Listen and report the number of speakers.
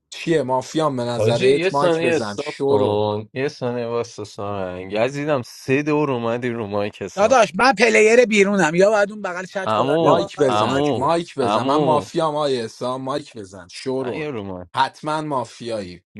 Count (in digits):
3